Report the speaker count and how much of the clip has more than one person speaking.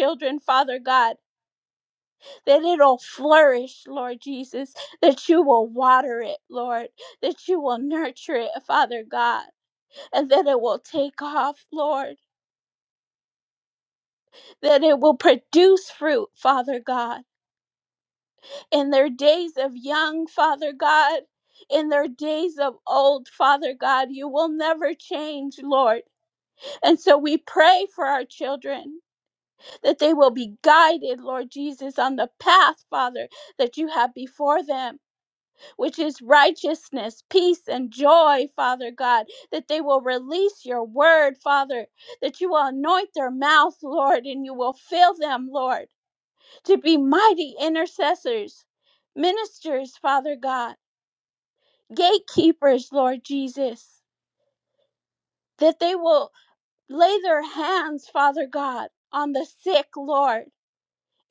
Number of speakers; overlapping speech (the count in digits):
1, no overlap